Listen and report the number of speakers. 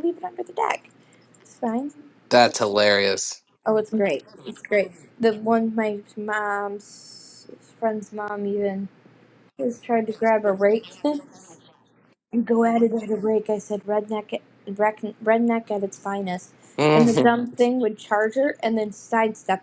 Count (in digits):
2